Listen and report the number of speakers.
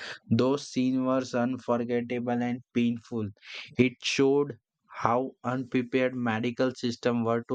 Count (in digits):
1